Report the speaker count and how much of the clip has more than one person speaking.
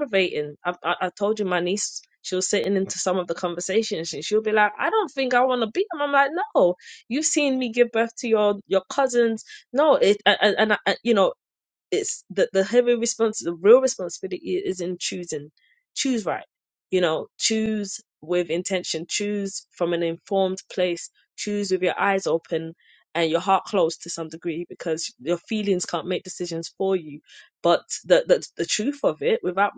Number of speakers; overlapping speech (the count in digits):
1, no overlap